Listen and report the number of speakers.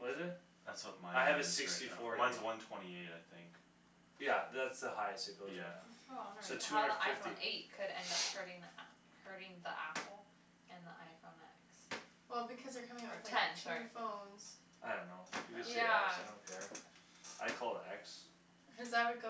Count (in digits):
4